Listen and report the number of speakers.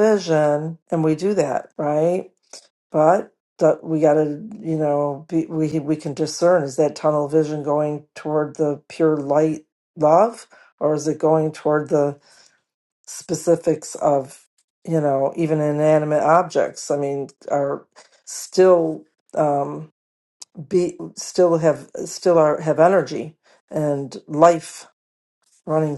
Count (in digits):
1